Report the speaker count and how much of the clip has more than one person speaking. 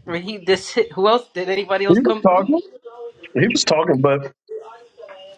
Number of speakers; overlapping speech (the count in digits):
2, about 12%